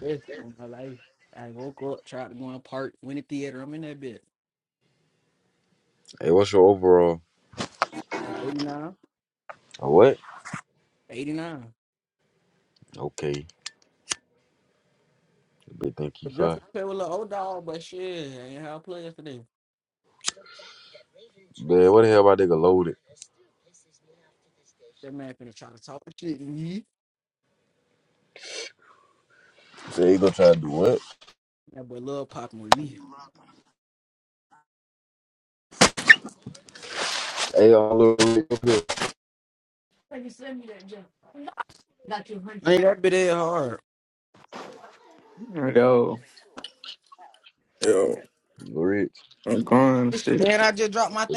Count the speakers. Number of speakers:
three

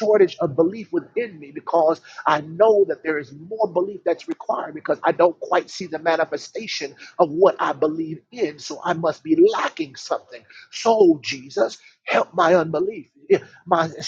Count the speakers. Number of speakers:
one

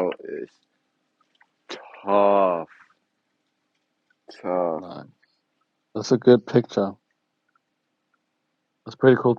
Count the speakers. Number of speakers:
two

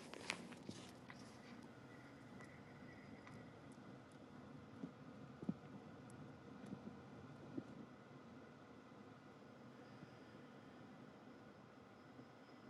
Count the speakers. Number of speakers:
zero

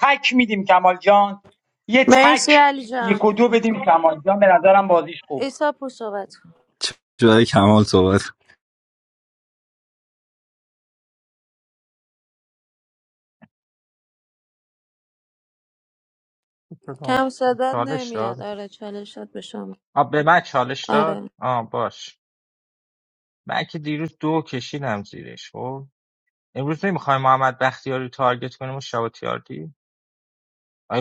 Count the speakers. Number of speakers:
four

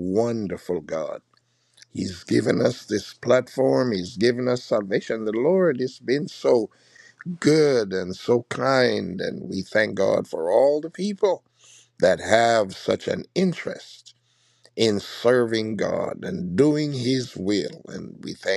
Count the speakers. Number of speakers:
one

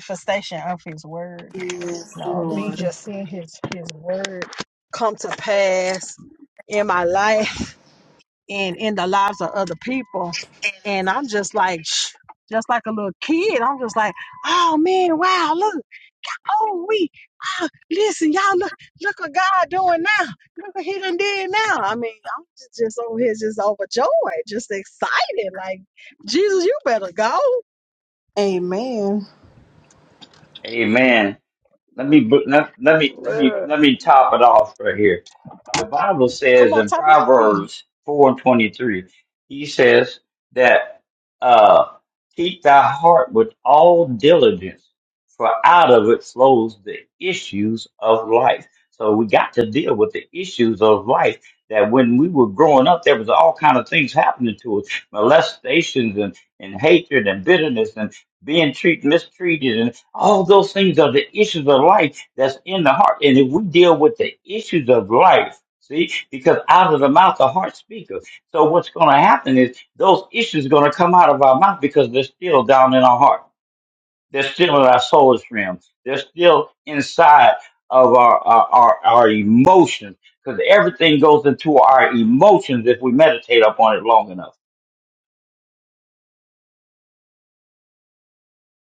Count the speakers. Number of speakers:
three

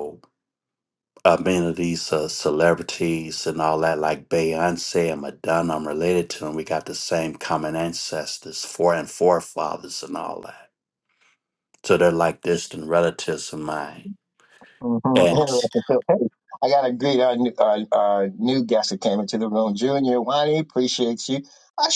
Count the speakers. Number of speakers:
two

